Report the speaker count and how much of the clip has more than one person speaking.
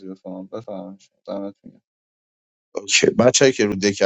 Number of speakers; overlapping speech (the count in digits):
2, no overlap